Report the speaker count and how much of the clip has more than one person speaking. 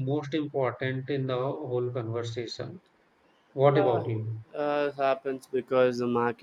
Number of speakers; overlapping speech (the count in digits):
2, about 6%